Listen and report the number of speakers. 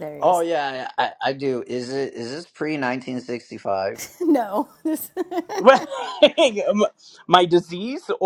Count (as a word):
three